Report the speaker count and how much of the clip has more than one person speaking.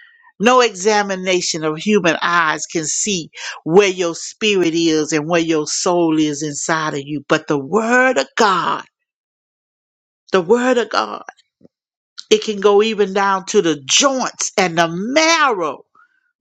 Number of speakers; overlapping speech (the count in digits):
1, no overlap